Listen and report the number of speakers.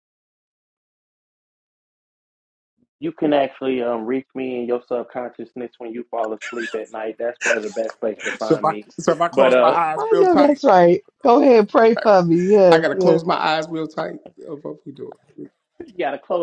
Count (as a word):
three